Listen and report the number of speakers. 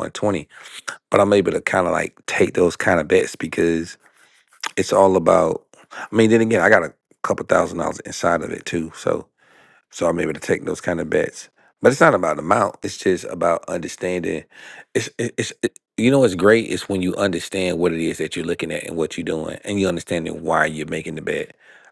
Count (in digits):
1